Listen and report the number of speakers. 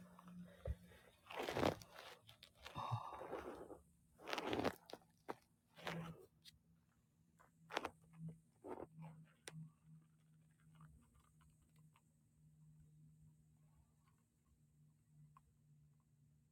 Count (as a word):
zero